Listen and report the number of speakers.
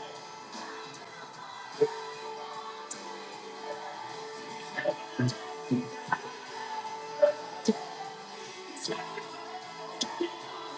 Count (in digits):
0